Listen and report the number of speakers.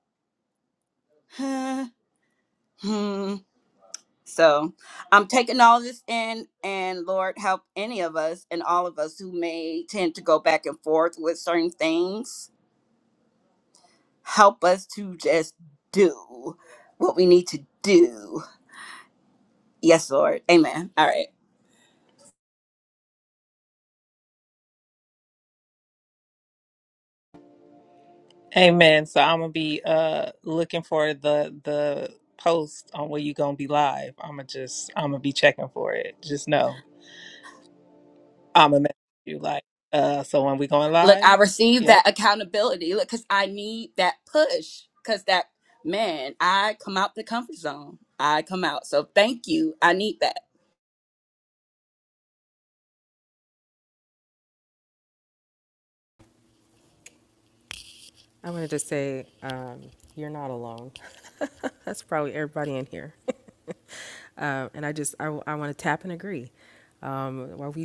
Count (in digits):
3